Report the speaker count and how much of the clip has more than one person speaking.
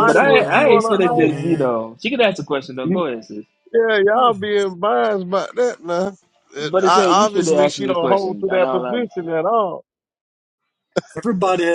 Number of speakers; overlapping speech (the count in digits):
3, about 41%